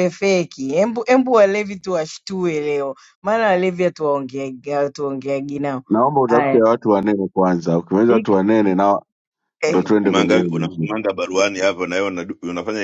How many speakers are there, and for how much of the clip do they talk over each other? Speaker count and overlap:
3, about 13%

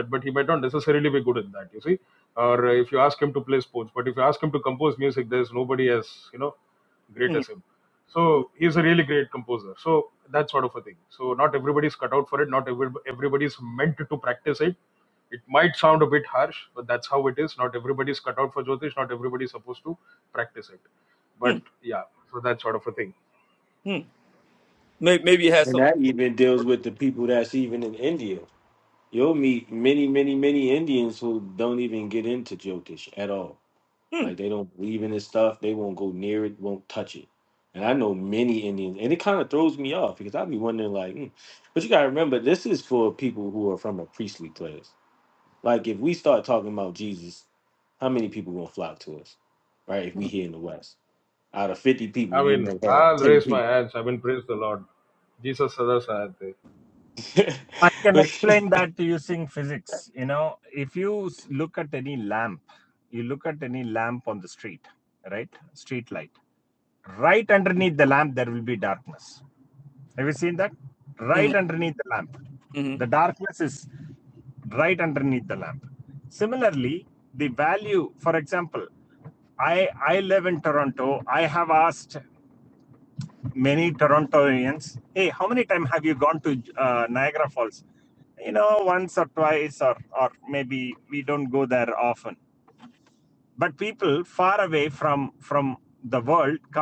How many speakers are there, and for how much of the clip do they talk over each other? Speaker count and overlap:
4, about 3%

